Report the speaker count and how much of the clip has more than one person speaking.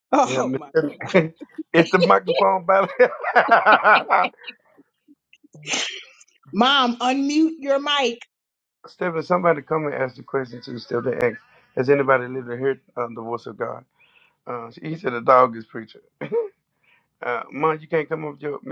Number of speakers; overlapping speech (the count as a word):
two, about 2%